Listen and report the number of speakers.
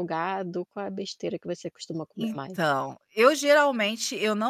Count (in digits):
2